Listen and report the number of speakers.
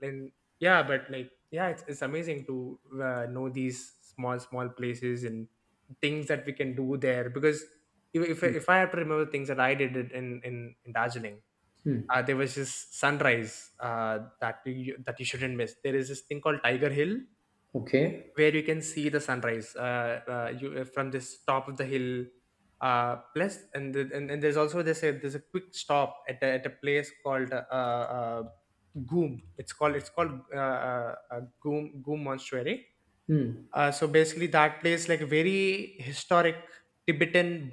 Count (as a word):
two